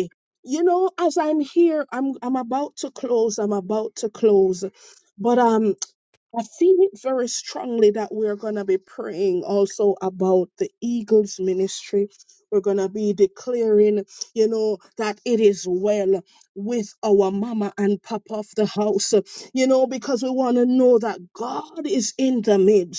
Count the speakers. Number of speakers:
one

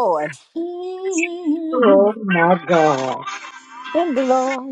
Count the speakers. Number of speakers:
three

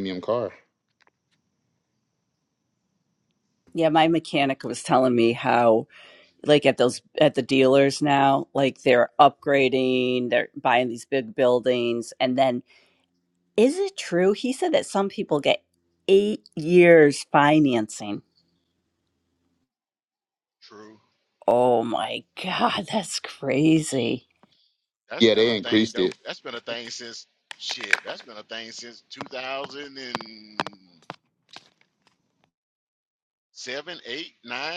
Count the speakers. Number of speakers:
three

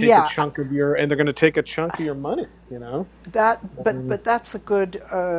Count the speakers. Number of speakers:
two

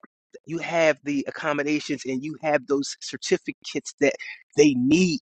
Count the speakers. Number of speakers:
one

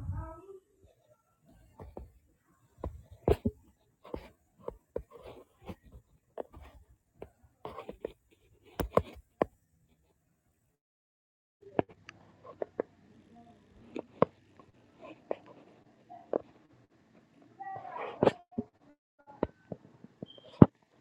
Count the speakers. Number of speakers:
zero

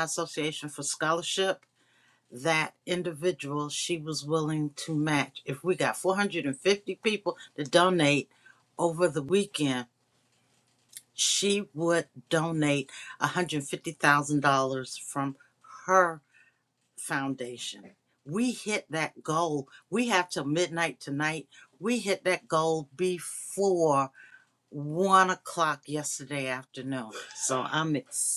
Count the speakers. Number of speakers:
one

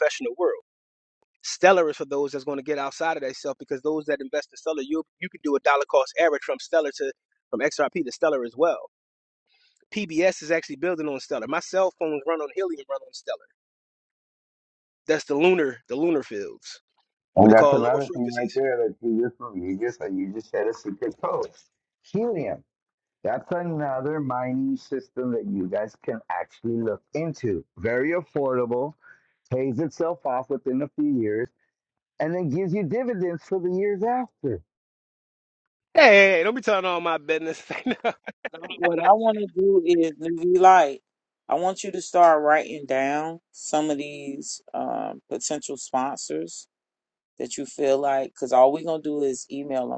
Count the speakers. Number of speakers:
three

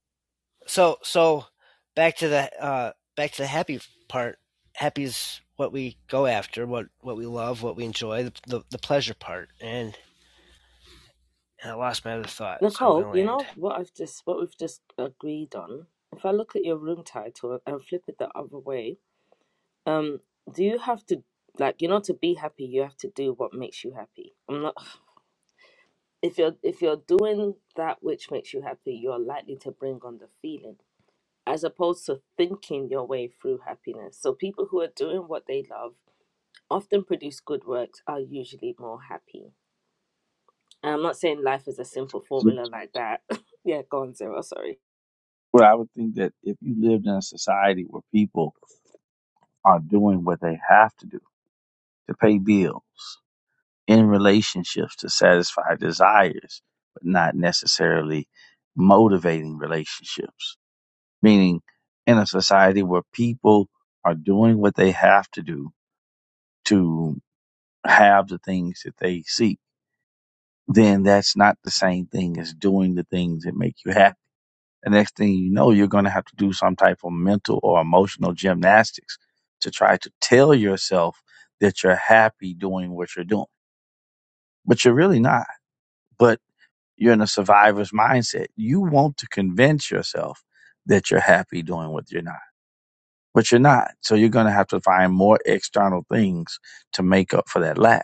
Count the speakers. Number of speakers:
three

